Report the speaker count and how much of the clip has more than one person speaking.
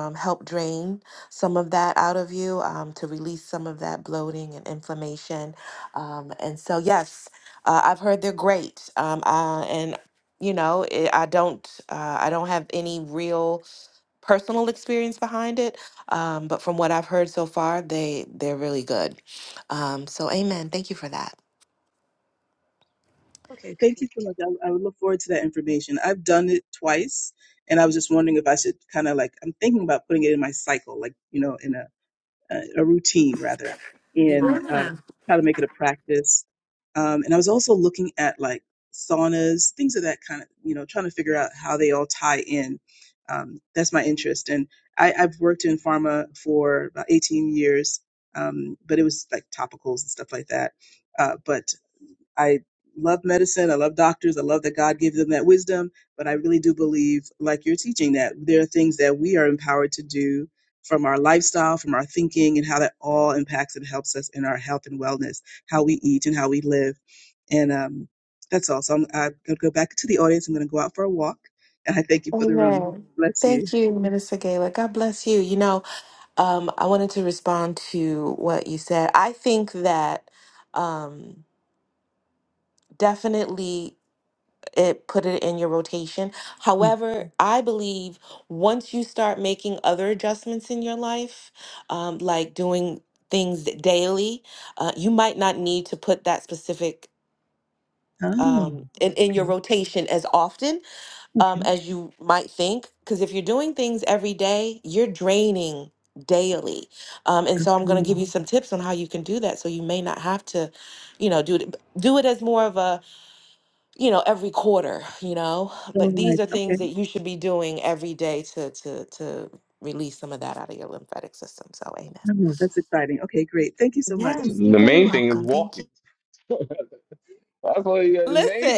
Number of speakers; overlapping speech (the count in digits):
3, about 5%